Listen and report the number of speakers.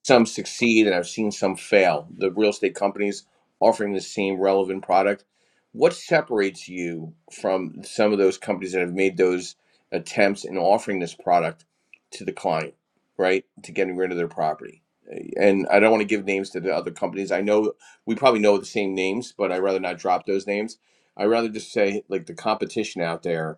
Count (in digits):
1